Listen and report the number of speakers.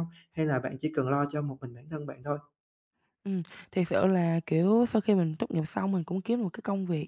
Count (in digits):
2